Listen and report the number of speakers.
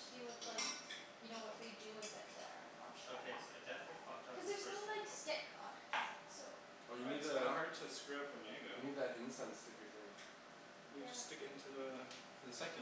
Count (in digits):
4